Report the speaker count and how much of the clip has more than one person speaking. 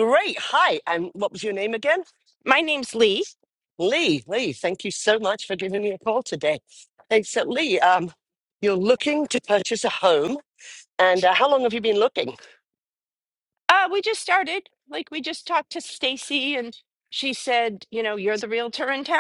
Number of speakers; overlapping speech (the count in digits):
2, no overlap